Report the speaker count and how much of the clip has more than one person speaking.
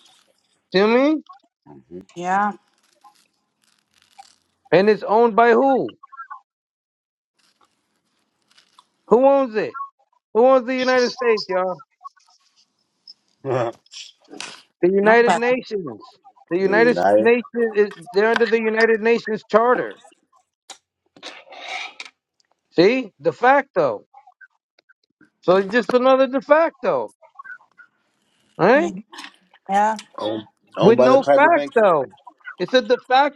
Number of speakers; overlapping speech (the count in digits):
3, about 7%